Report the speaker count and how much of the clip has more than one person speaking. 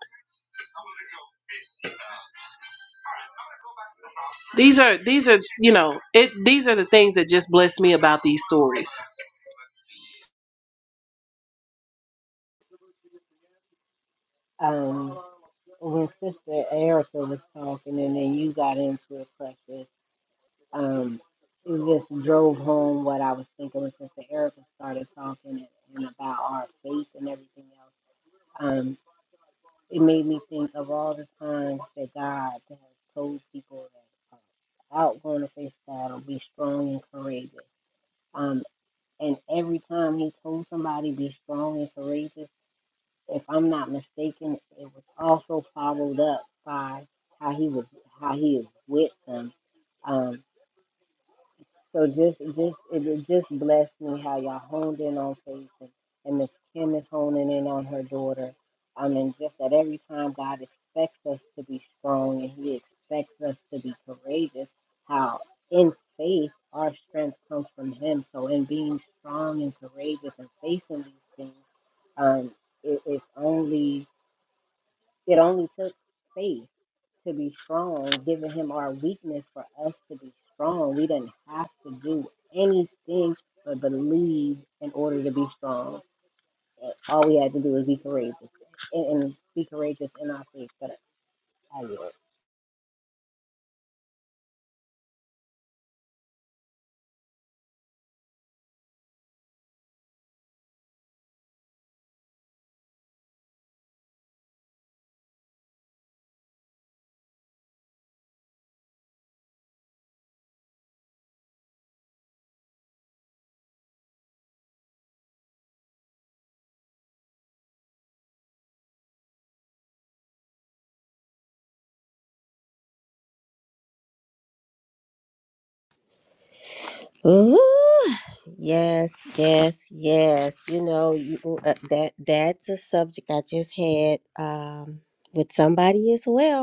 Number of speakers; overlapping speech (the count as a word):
three, no overlap